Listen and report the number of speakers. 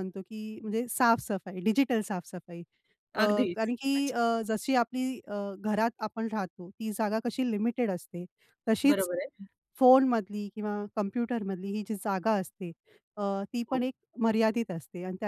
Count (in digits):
2